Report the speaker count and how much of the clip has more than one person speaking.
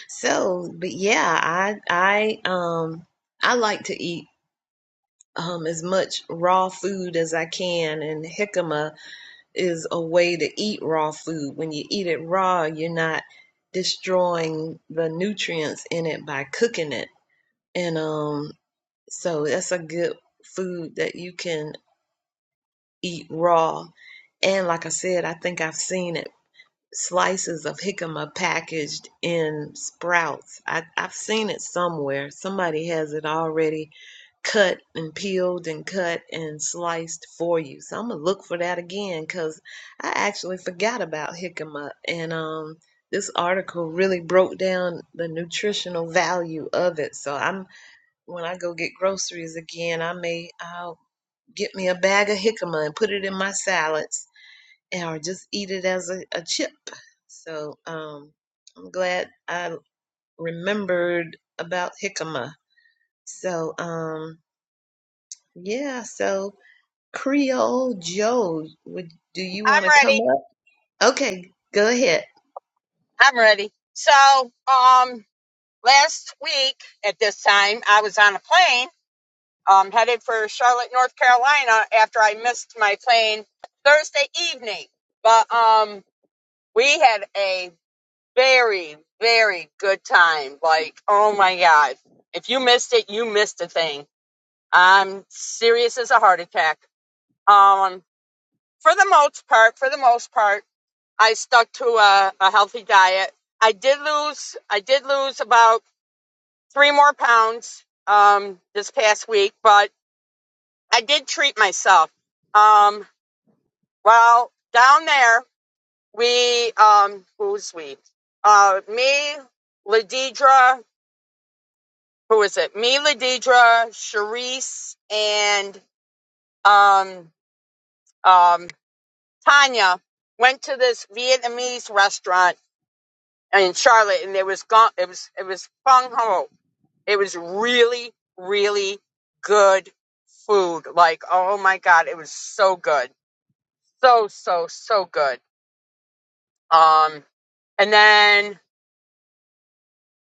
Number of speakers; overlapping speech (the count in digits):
2, under 1%